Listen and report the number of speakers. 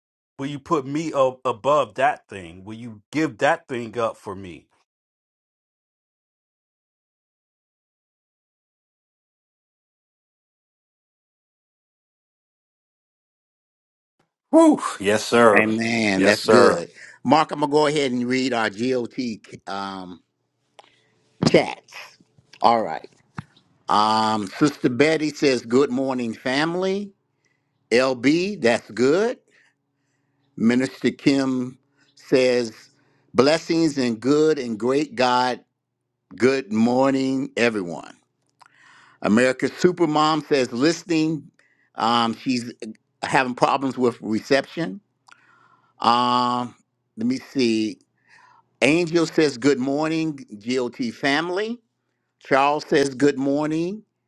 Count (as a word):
three